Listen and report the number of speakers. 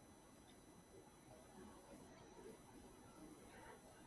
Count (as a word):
zero